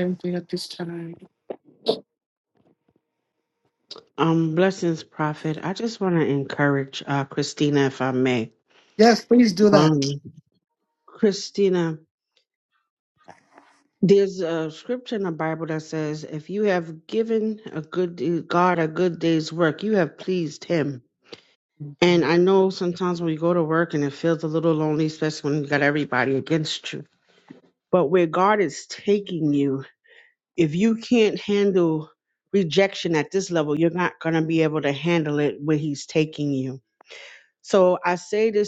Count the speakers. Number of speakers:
two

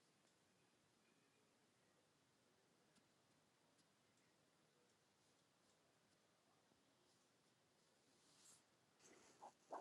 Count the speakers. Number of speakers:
zero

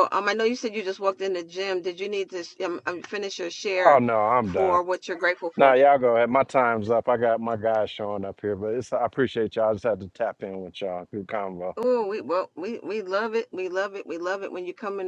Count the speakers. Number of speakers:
two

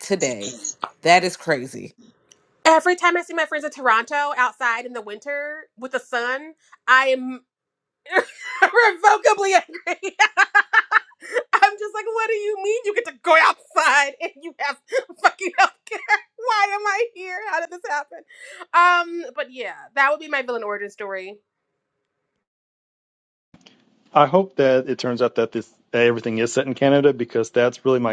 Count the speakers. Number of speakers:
three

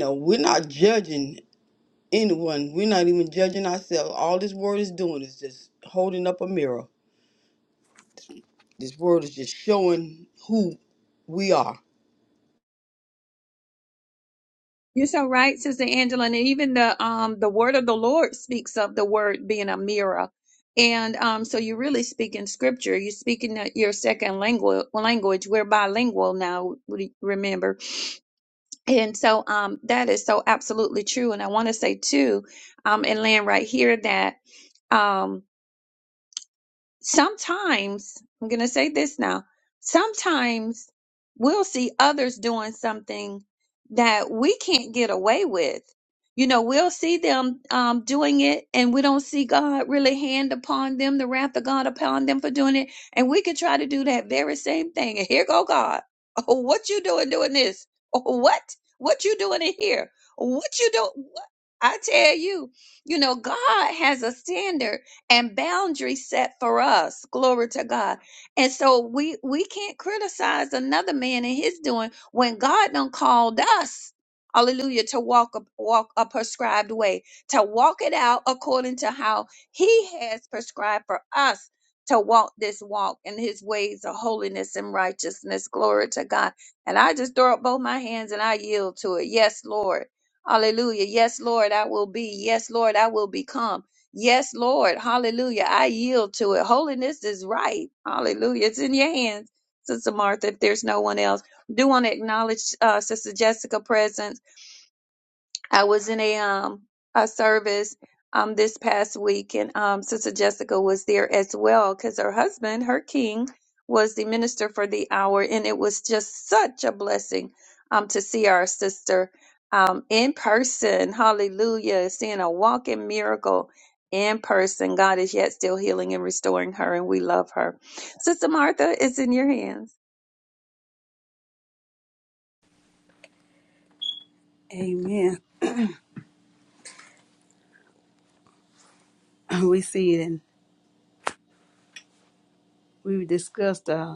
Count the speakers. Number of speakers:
three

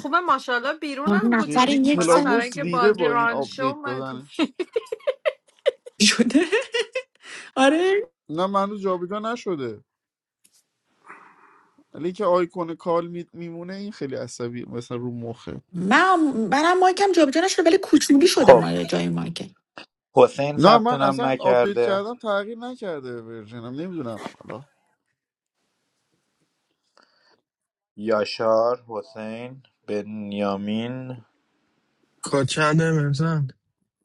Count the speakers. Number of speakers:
five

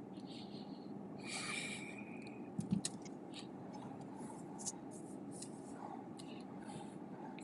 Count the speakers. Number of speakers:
zero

